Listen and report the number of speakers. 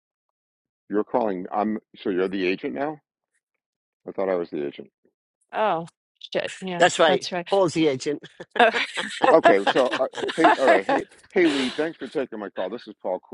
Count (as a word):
three